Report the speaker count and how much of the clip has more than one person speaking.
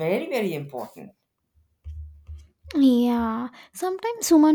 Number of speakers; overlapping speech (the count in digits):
2, no overlap